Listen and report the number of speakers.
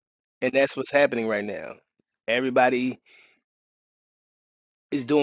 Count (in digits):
1